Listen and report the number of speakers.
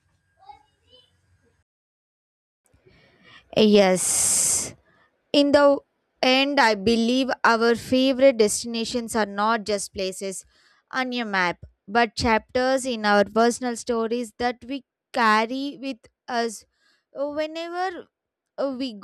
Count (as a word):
one